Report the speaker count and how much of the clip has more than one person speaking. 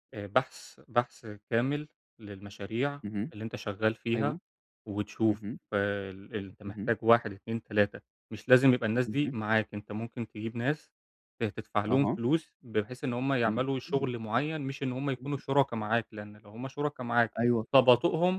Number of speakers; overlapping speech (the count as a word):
two, about 10%